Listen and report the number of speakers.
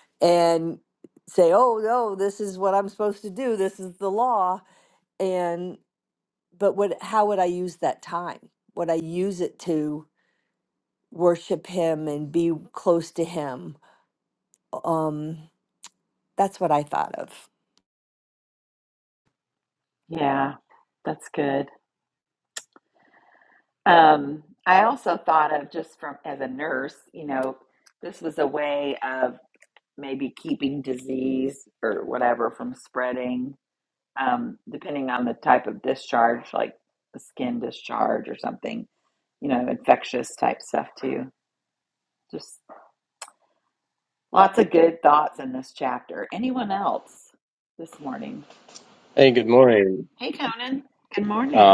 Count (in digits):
3